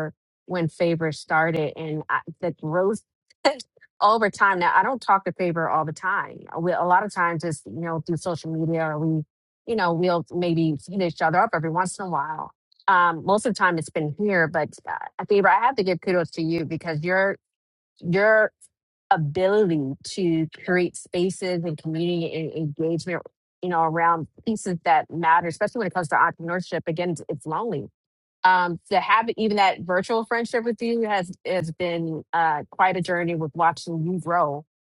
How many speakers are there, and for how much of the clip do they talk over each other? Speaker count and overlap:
1, no overlap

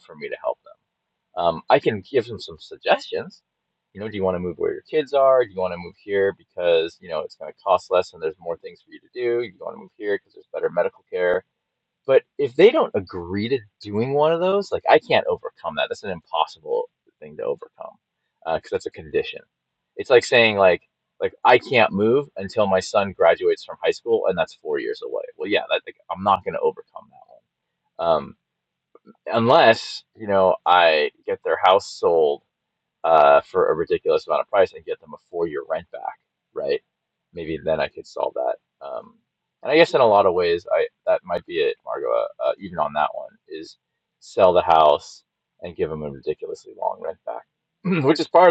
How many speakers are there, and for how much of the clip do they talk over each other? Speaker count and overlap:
1, no overlap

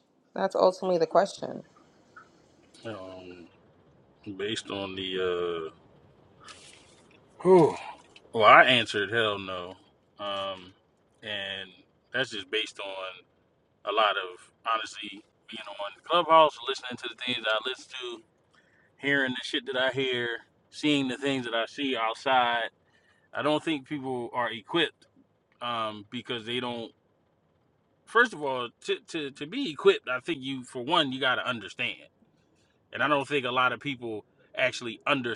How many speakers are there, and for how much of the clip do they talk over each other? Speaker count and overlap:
2, no overlap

